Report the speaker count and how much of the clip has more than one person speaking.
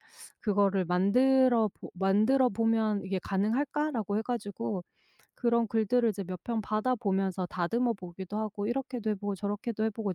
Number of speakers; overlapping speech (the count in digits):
1, no overlap